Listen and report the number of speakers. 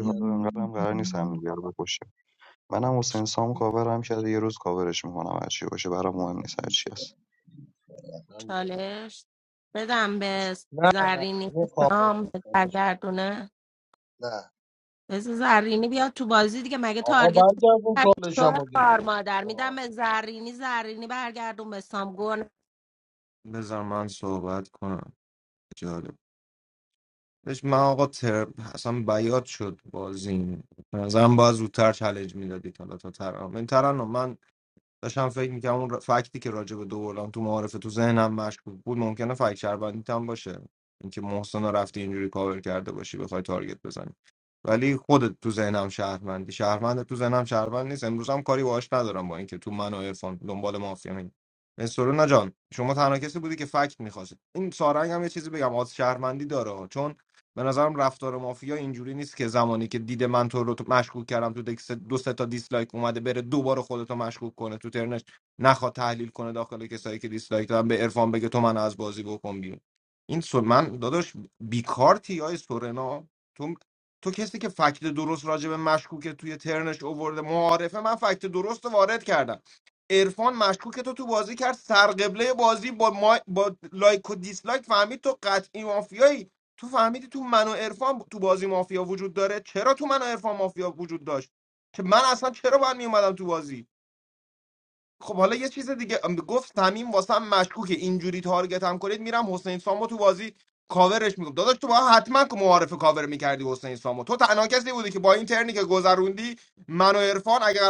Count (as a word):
four